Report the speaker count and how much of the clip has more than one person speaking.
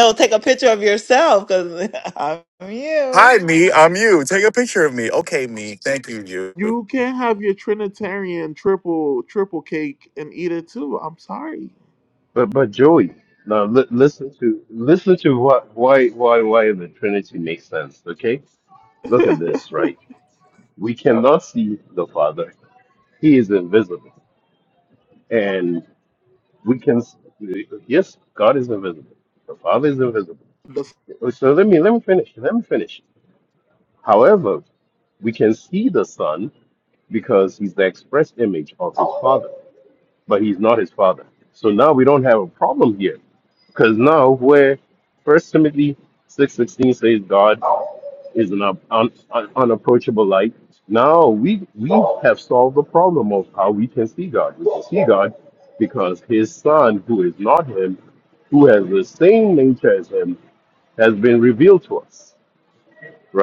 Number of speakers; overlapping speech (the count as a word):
four, under 1%